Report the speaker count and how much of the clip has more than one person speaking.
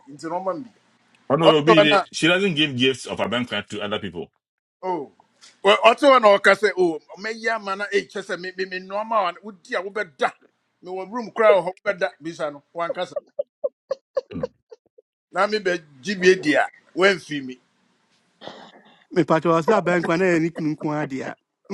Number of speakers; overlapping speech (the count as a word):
three, no overlap